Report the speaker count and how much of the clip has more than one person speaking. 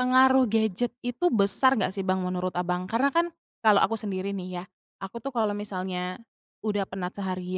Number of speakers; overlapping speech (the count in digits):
1, no overlap